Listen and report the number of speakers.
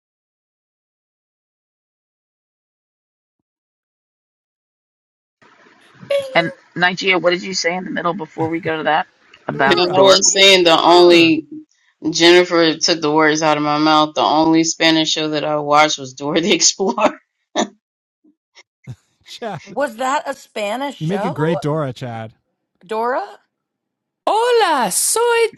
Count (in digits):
5